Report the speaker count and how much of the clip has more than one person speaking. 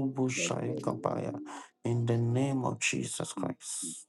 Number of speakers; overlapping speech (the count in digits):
2, about 44%